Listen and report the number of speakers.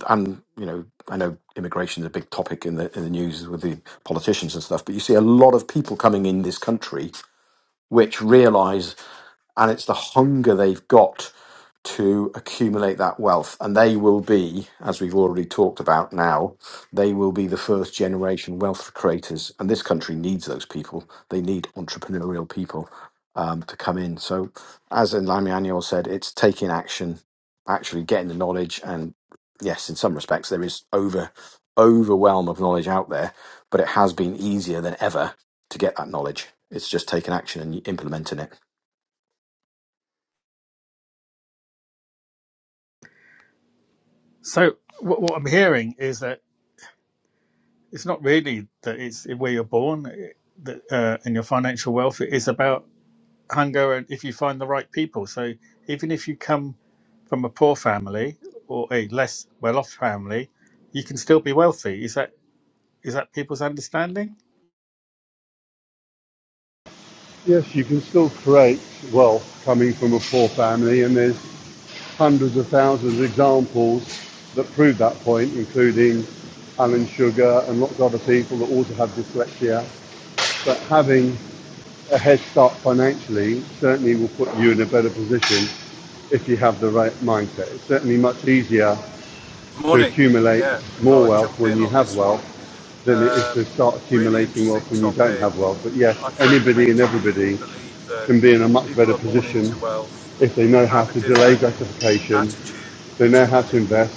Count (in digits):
4